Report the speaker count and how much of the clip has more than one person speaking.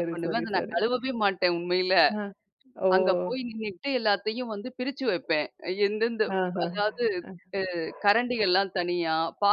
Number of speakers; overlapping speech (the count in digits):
2, about 10%